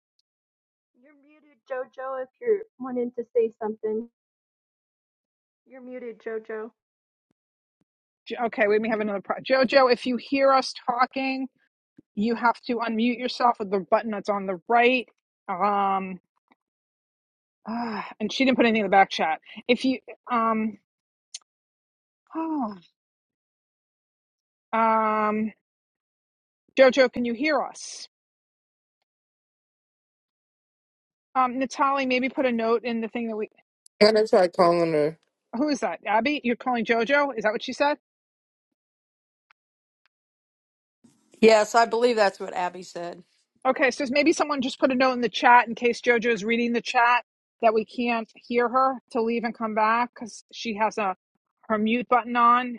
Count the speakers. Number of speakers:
4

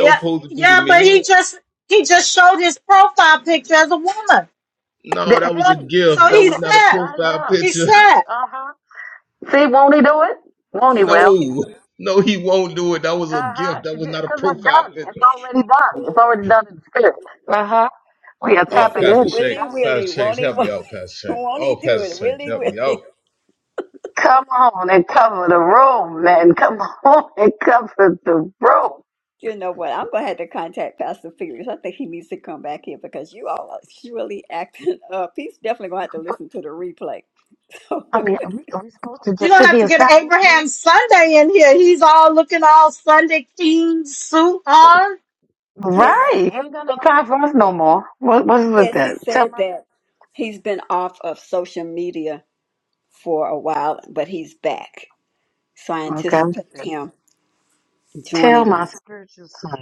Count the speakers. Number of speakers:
4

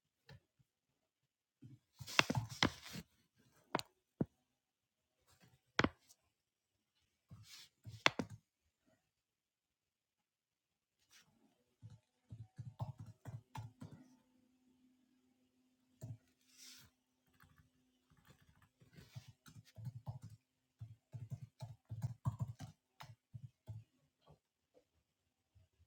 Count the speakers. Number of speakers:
0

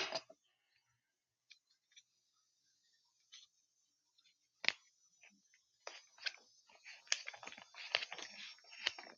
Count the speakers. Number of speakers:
0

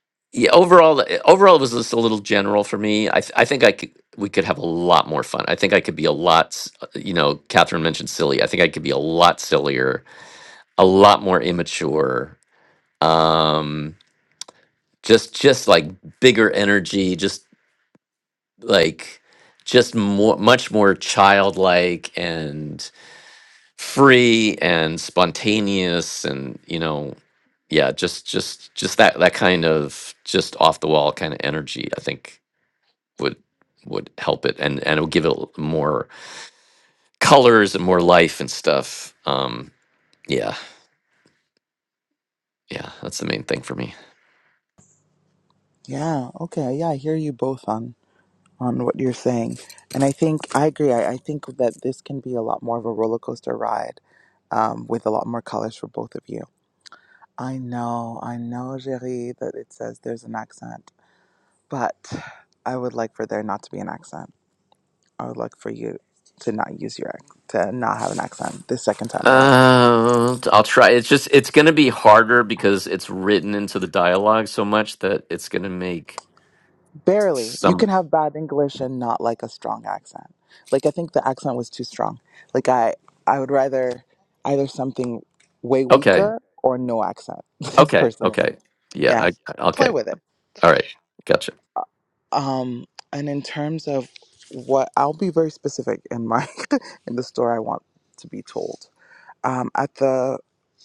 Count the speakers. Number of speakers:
2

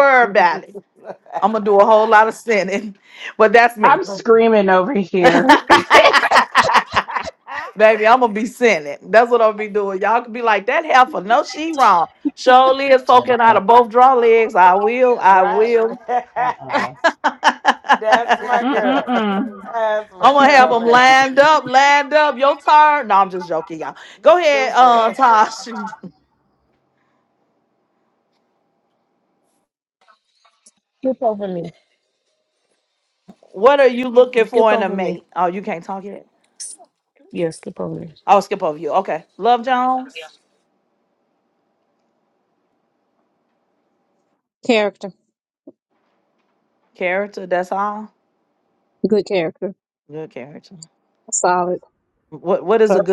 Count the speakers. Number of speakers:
5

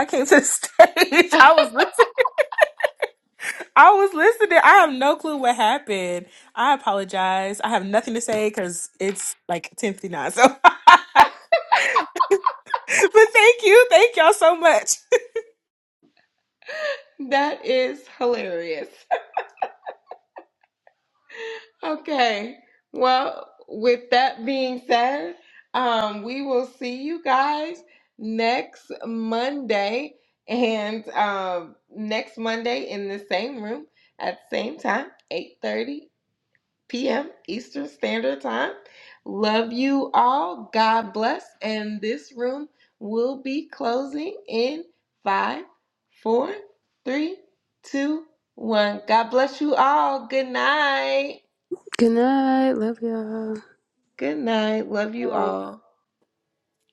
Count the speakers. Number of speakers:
3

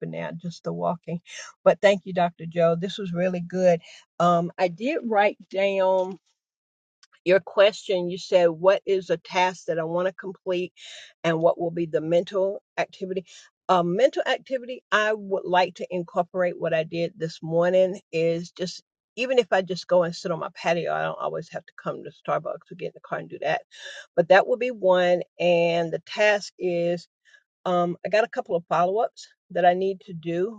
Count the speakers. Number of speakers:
1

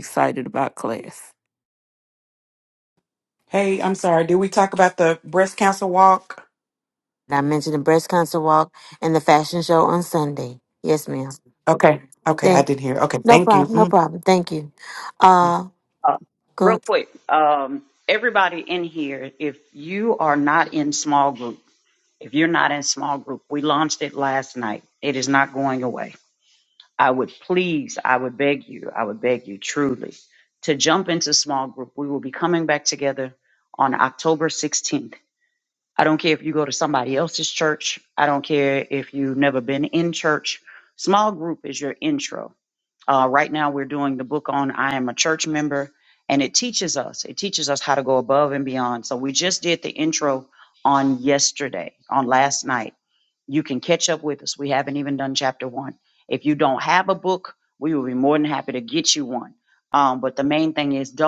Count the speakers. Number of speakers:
4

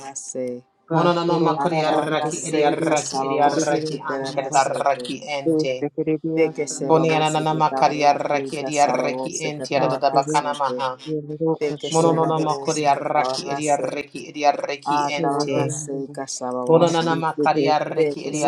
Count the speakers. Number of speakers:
3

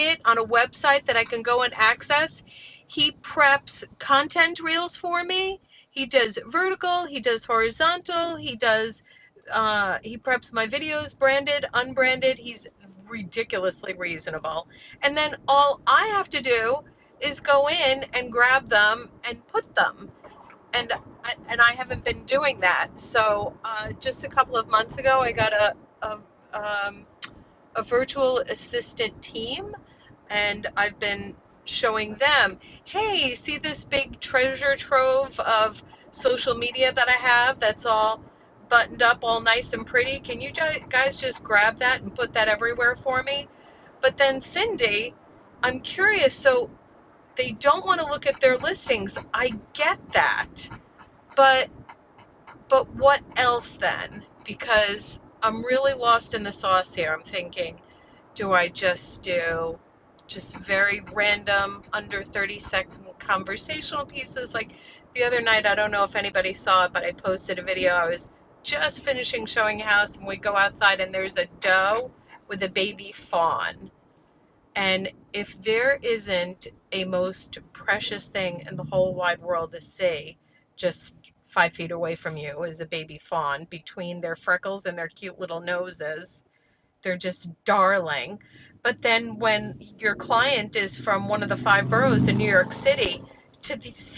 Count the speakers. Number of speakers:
1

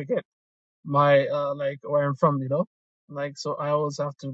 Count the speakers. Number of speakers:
1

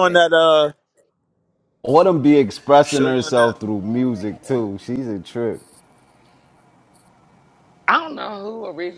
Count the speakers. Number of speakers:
3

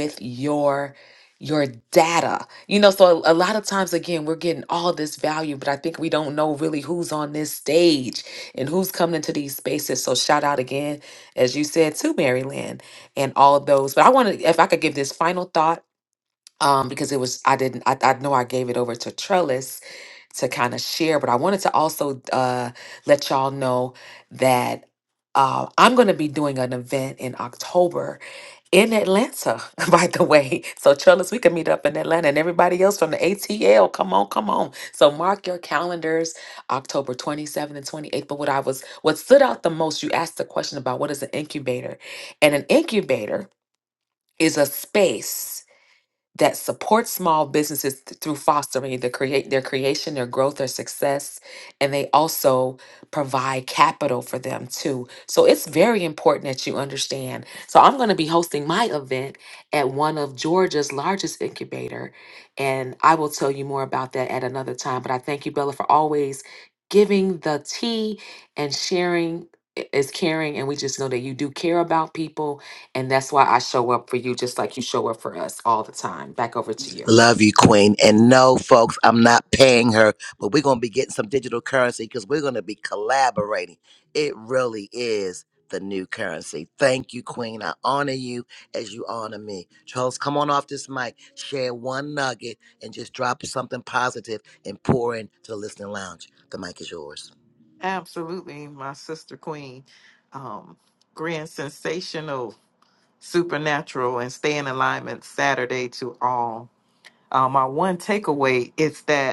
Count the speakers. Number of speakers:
3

